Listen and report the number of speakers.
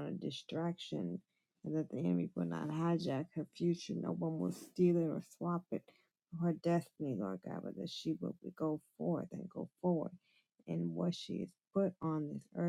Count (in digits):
1